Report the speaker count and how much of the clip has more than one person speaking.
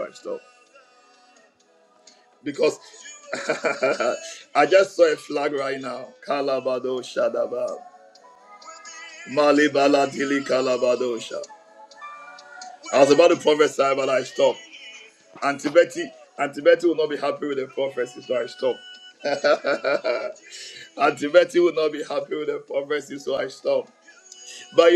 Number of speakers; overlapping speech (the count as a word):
one, no overlap